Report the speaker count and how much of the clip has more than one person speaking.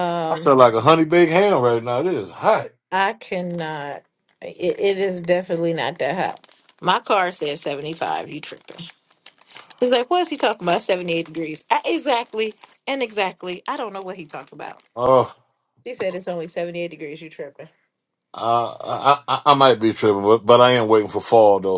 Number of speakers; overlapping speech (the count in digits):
2, about 1%